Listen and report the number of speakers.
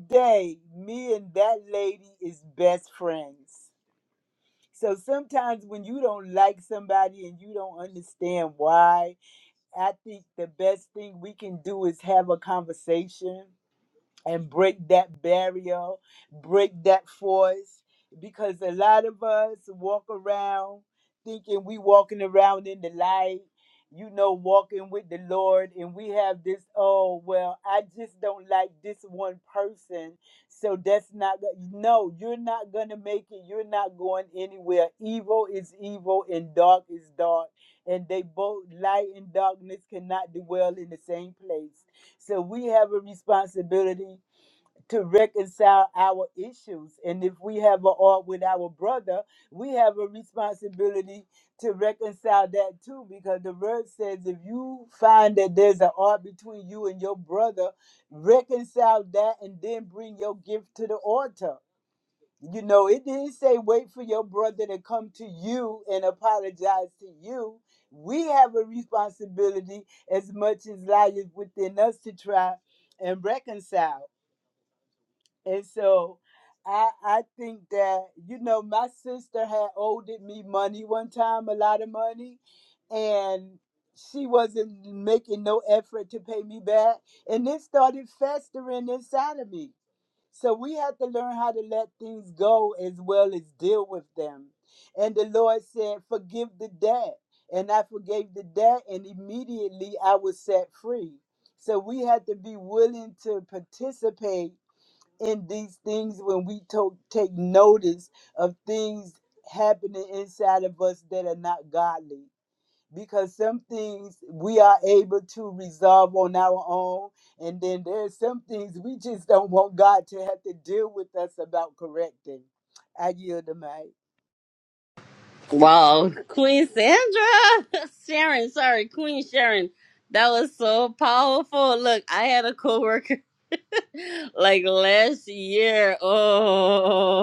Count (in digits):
2